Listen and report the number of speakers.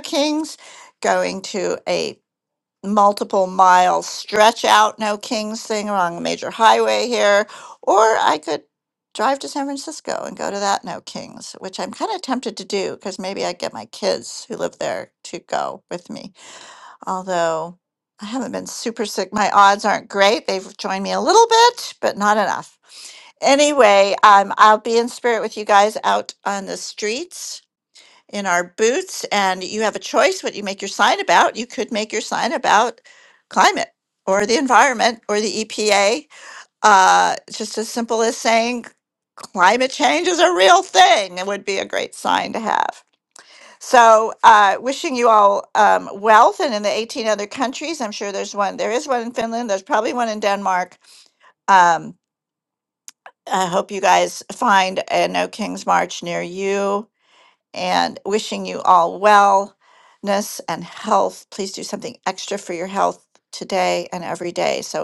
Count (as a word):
one